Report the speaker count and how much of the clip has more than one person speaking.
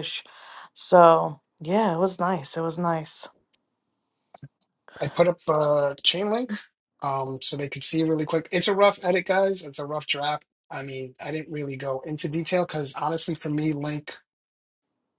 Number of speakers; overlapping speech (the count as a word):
two, no overlap